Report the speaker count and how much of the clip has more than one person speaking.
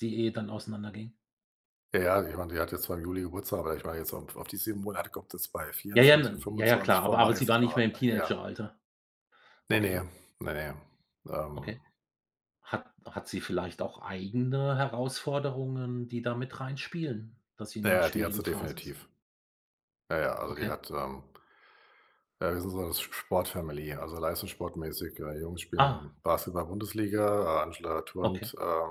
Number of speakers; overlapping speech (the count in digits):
2, about 12%